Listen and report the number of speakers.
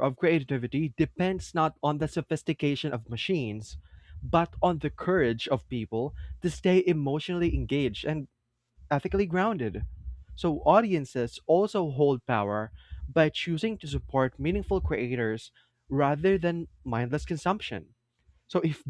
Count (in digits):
1